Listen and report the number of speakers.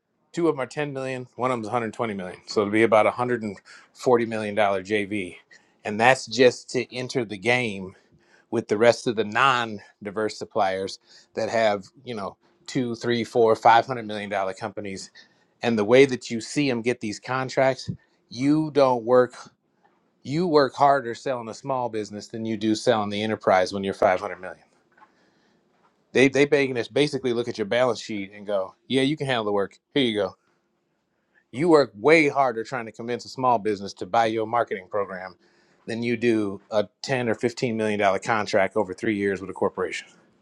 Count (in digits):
1